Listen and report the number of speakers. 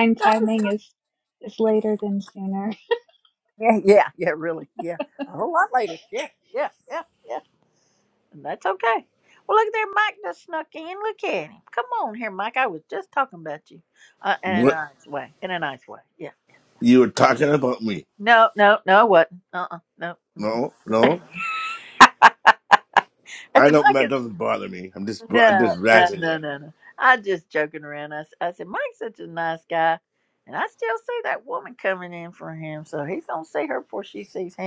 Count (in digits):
3